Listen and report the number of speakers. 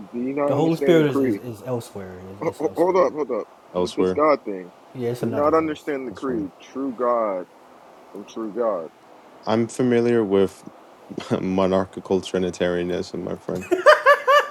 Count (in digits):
3